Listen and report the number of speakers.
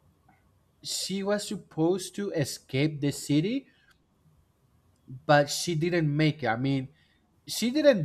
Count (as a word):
one